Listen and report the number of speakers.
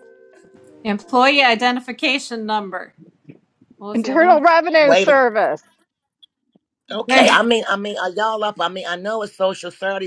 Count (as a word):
three